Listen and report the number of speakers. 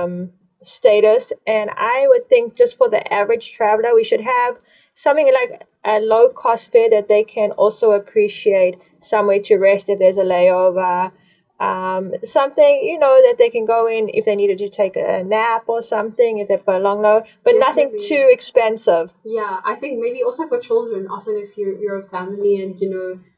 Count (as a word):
two